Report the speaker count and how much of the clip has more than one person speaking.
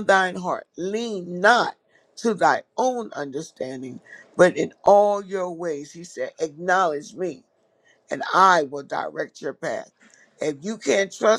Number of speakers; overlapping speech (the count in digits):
1, no overlap